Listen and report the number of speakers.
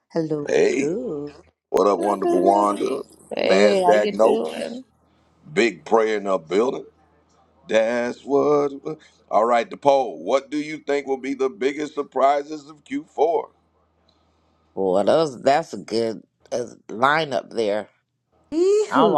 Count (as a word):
three